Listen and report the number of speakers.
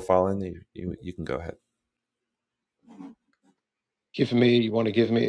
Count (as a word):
two